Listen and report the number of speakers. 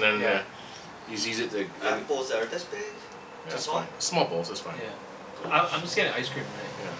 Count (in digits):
3